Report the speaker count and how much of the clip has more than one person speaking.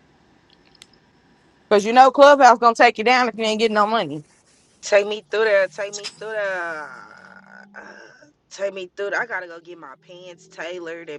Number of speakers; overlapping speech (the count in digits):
2, no overlap